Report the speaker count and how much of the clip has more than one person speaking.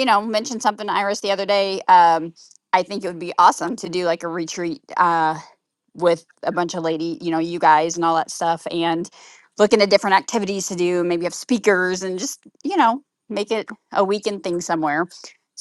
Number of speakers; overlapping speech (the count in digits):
1, no overlap